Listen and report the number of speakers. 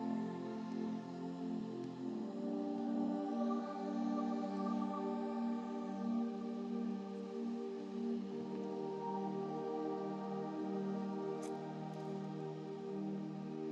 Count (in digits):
0